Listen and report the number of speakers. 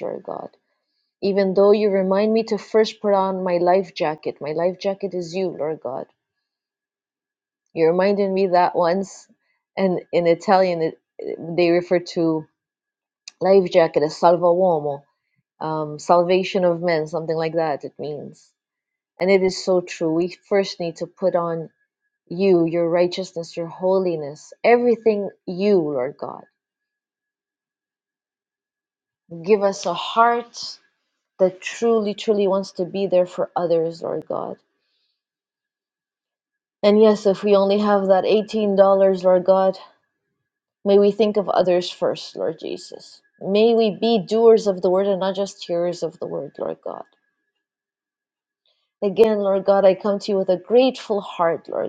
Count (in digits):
1